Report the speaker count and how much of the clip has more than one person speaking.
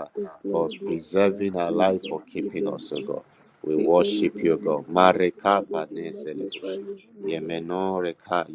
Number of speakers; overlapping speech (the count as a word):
two, about 70%